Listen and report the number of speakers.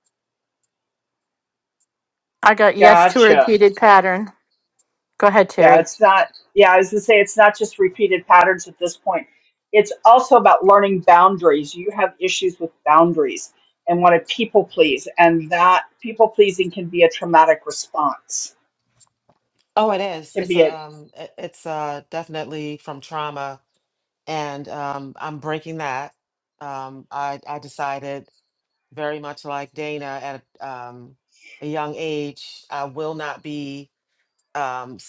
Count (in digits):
3